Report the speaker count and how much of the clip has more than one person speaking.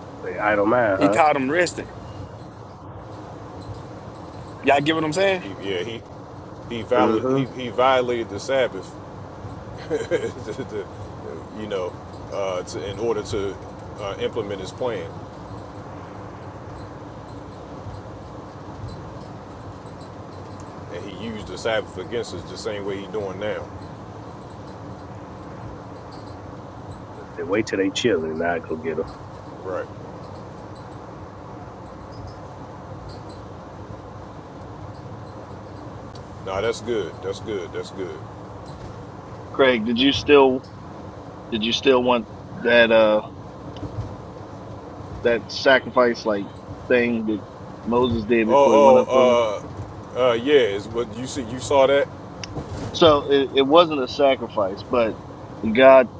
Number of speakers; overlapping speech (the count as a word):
four, about 3%